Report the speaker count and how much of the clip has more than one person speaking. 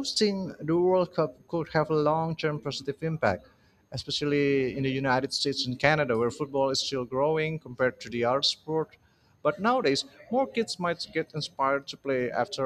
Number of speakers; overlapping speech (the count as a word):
one, no overlap